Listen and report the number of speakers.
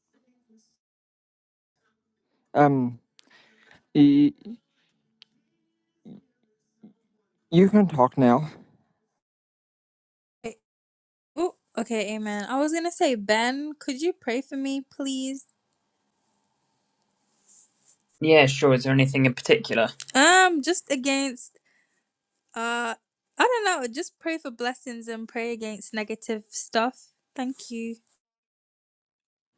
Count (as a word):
three